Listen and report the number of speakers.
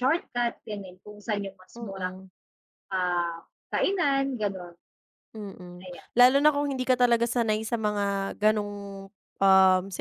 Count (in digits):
2